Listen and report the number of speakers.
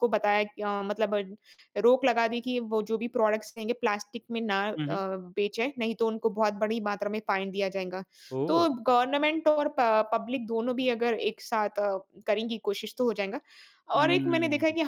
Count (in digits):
2